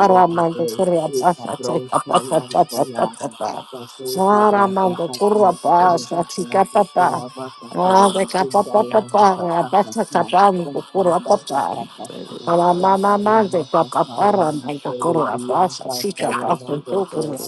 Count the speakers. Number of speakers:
2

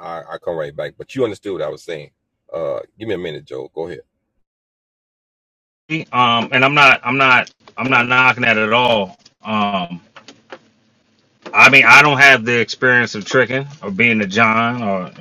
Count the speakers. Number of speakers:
2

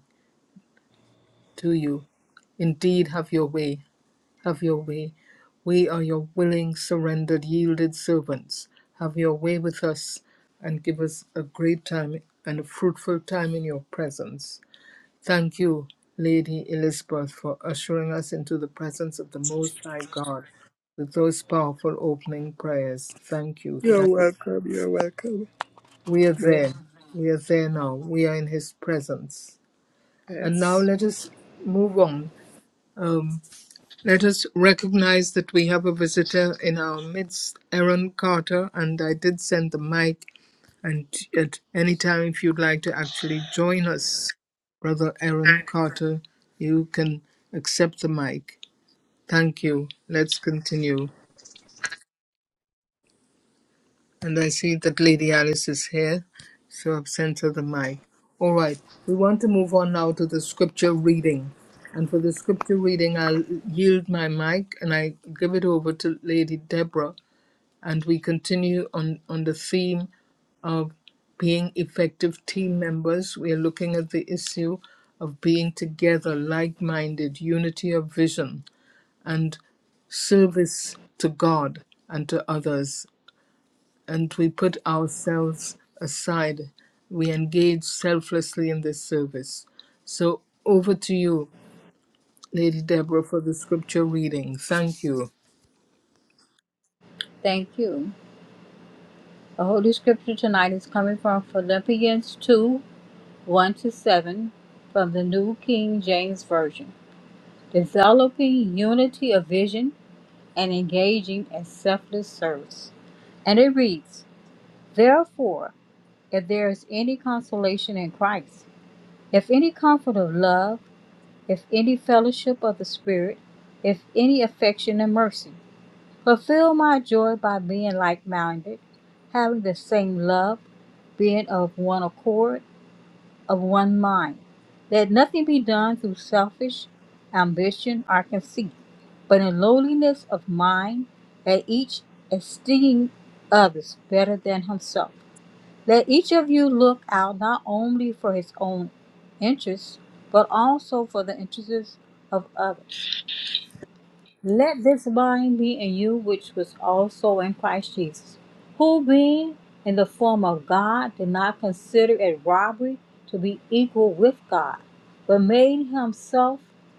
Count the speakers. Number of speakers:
3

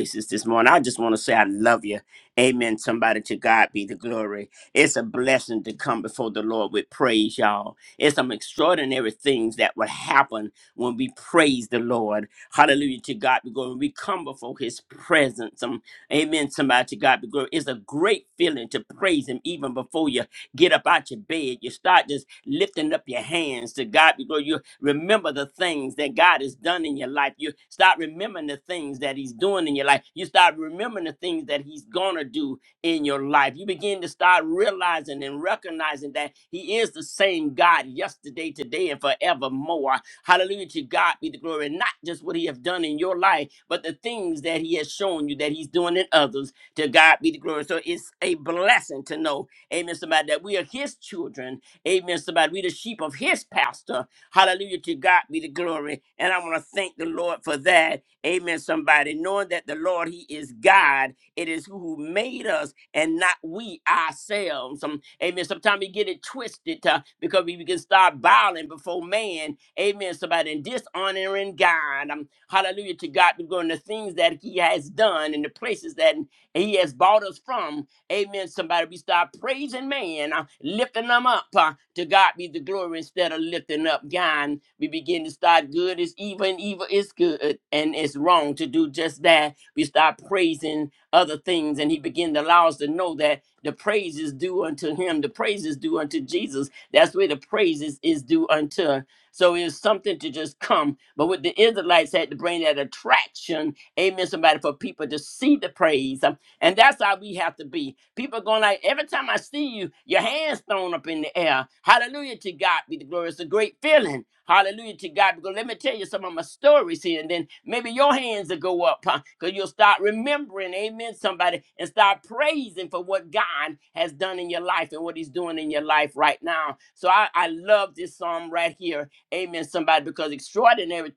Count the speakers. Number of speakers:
1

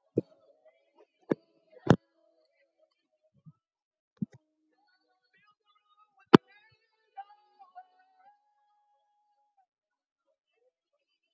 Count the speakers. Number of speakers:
0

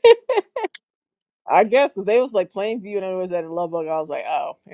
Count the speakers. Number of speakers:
1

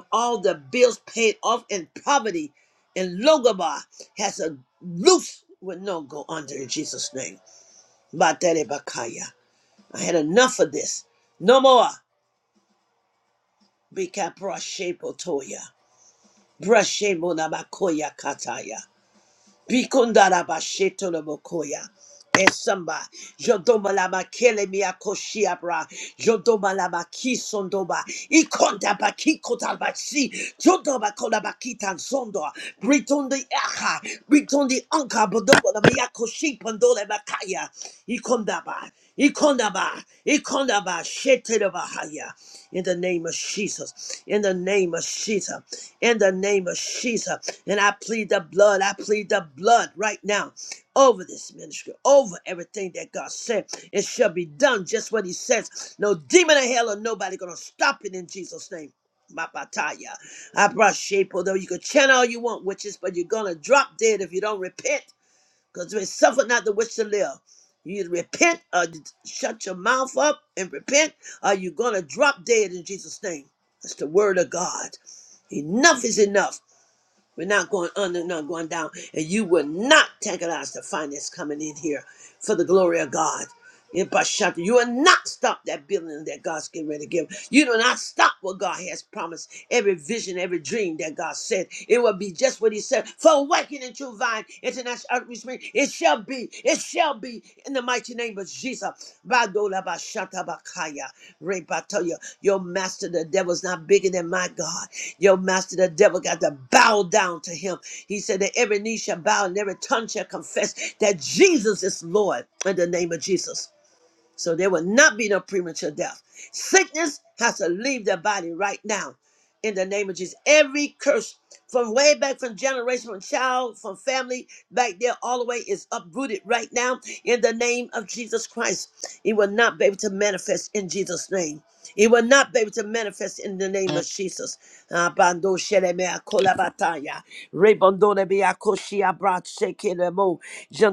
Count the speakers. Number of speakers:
1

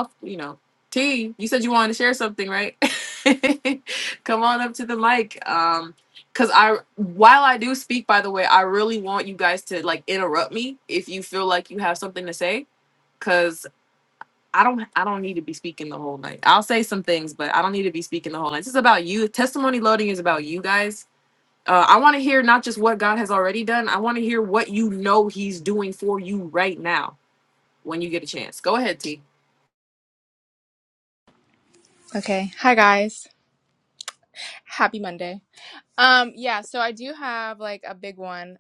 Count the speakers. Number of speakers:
2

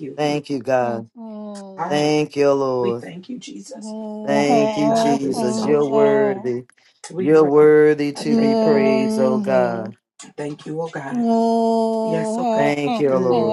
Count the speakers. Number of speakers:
3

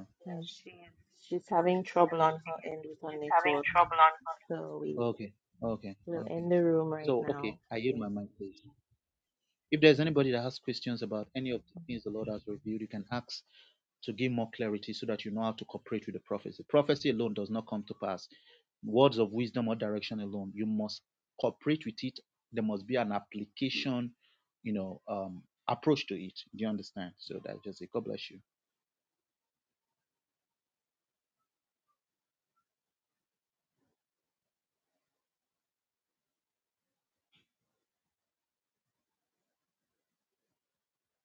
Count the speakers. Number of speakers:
2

